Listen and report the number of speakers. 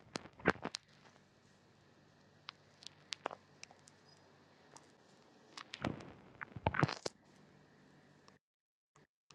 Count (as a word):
zero